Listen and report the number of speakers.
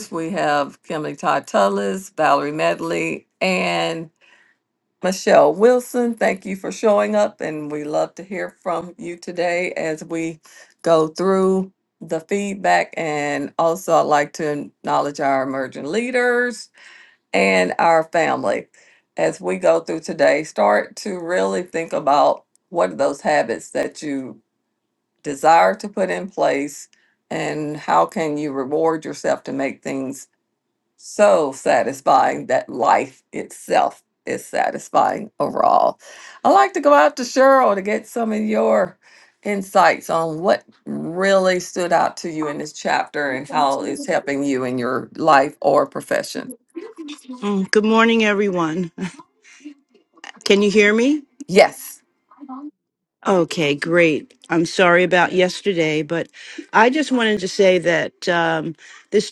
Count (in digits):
2